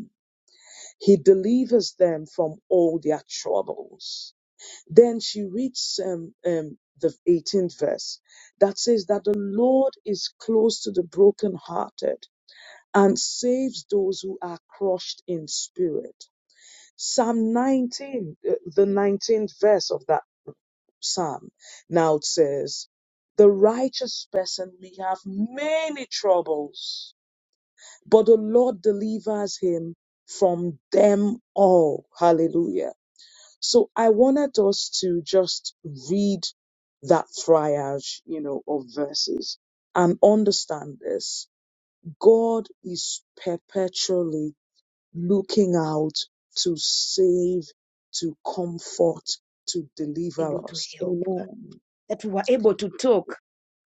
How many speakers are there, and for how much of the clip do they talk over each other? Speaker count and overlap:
two, about 1%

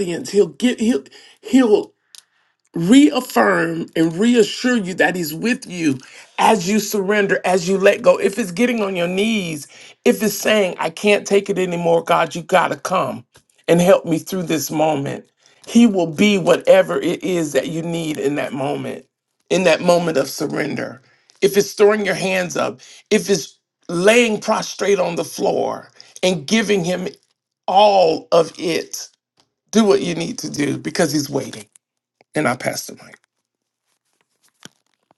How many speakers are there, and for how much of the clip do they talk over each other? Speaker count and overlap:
one, no overlap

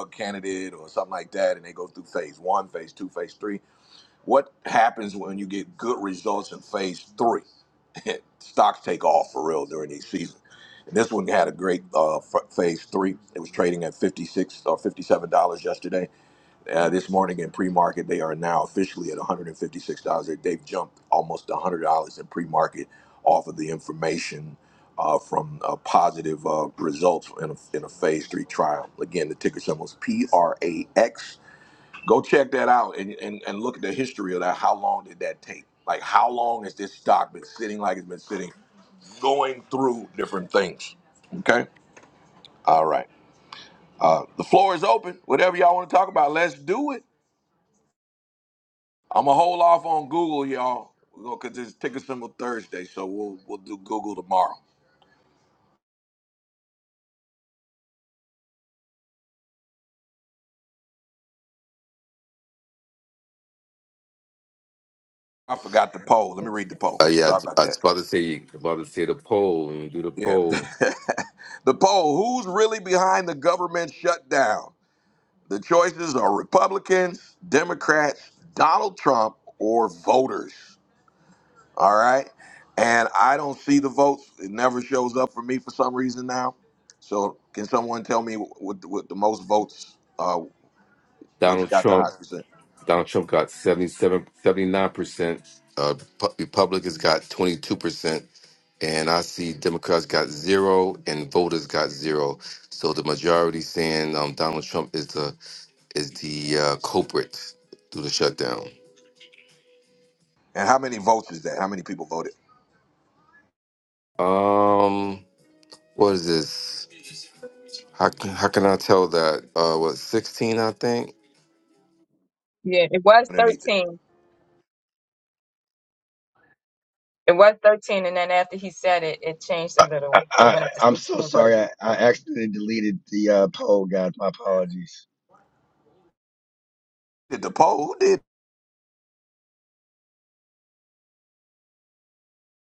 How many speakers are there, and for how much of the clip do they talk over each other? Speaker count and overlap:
four, about 2%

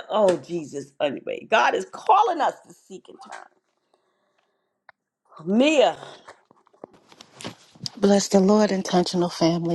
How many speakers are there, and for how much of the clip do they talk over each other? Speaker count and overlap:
two, no overlap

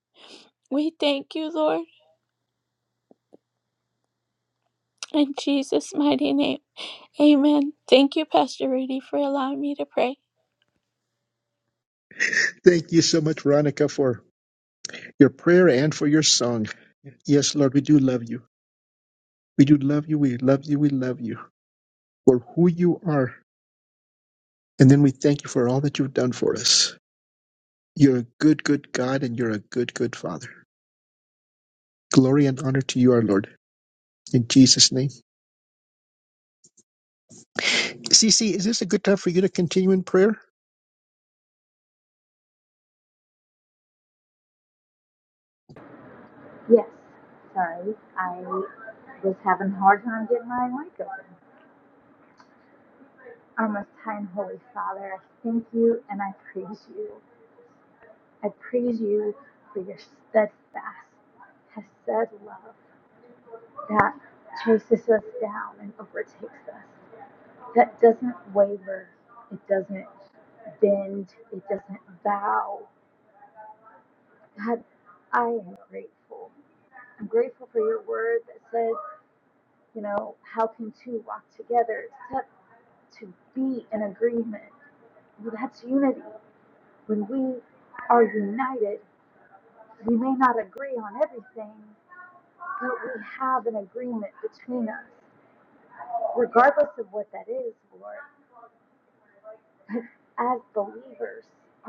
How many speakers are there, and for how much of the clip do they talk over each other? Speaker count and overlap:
three, no overlap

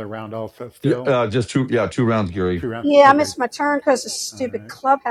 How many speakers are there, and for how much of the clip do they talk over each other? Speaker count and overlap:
three, about 24%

